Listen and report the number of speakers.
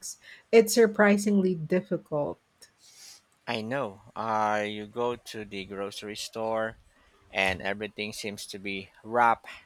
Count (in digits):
2